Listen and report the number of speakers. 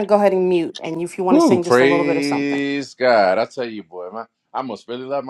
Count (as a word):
two